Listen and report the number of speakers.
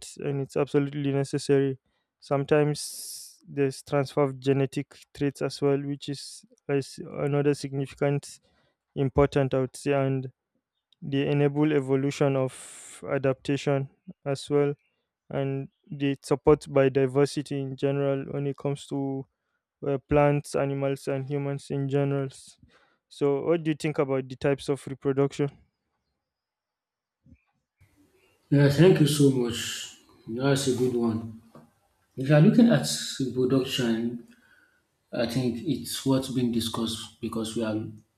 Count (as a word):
two